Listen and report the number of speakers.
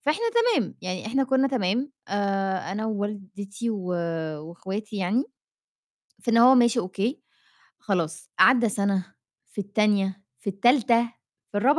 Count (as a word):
one